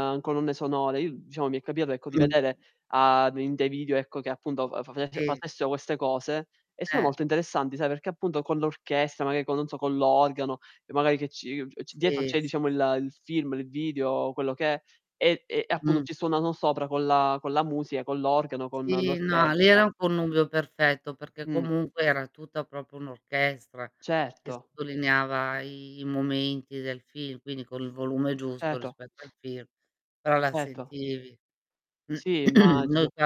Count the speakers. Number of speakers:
2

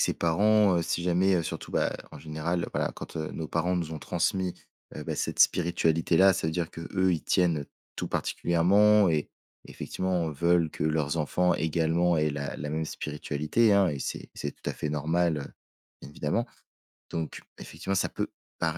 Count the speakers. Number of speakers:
1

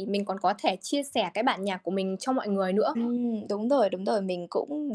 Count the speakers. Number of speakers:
2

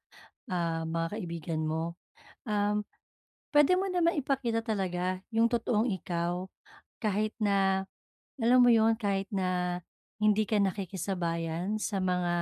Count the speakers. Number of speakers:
1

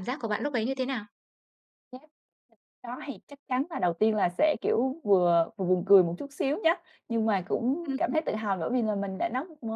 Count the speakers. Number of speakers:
2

